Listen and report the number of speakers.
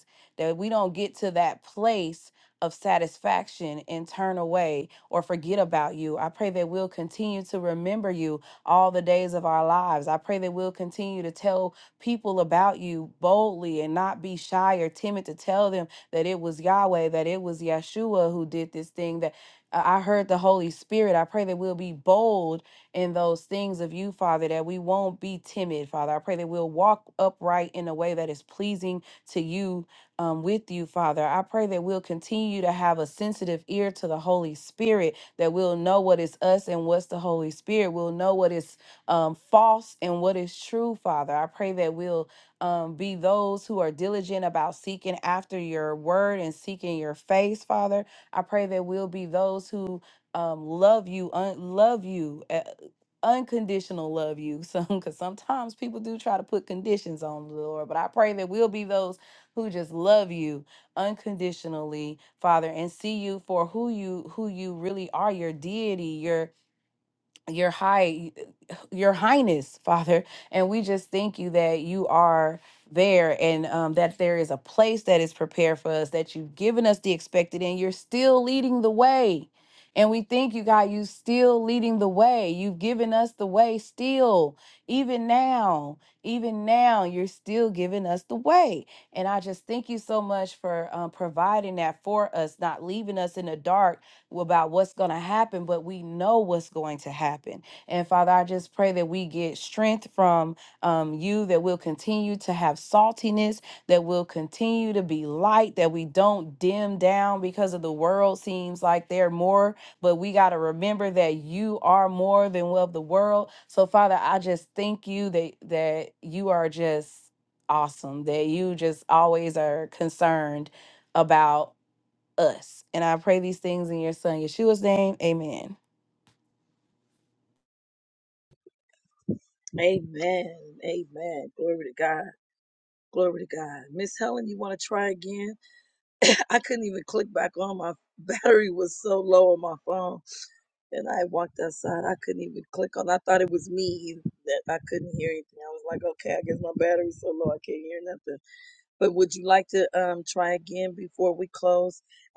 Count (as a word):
two